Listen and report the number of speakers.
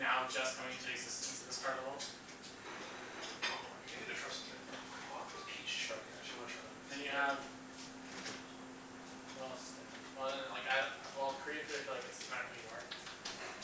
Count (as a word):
two